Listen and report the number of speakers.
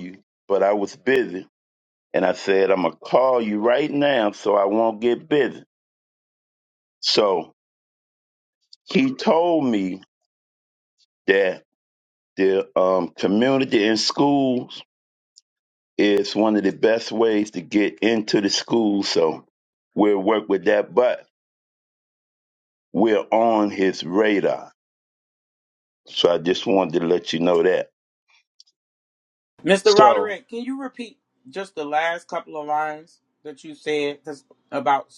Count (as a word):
two